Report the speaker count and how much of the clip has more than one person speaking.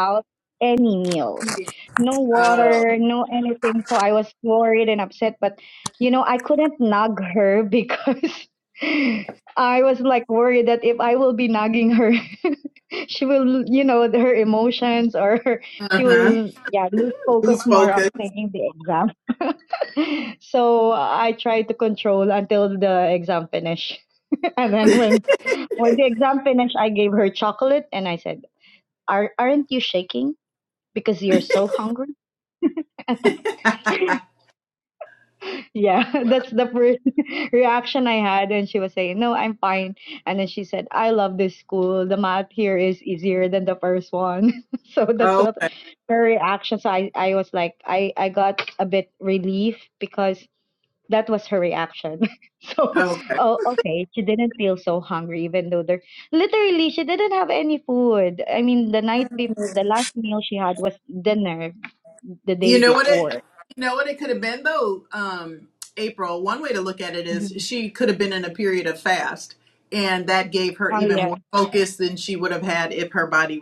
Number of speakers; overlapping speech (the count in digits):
2, about 6%